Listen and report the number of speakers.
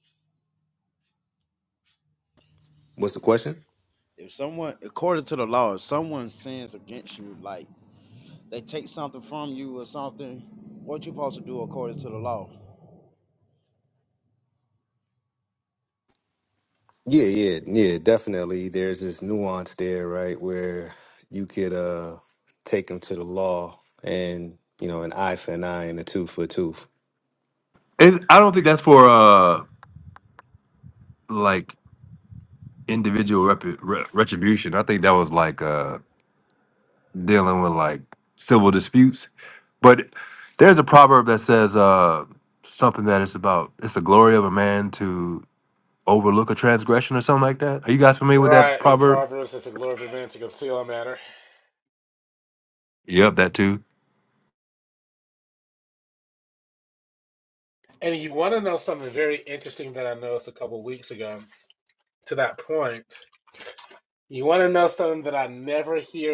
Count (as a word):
four